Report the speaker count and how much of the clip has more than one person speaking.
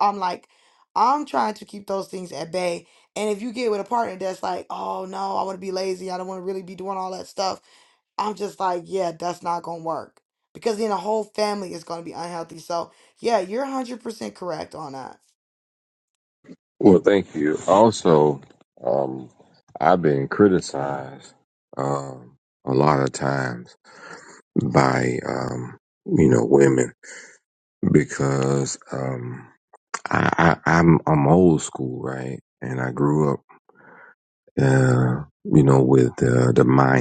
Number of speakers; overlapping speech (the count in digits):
2, no overlap